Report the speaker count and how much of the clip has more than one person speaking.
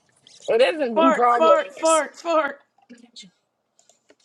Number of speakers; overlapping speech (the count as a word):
two, about 16%